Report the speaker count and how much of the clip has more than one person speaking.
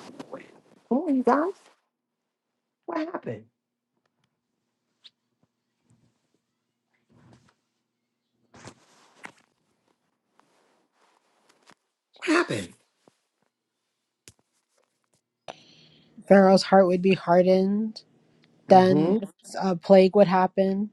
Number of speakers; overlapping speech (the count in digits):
2, about 2%